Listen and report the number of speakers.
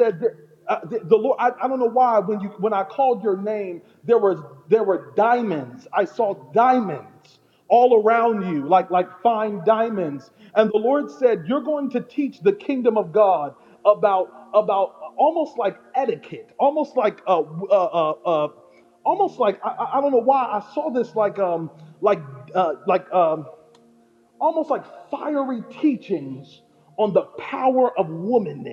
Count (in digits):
1